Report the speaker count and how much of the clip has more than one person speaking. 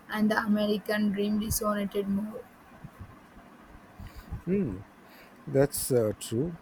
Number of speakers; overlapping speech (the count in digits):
2, no overlap